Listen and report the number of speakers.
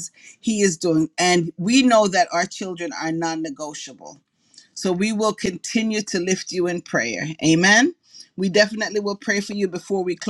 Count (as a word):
one